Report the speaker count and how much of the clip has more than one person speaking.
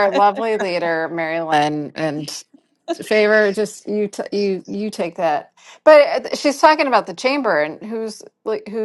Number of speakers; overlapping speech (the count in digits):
1, no overlap